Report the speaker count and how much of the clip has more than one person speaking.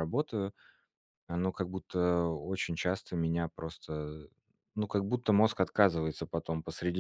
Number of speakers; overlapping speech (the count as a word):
one, no overlap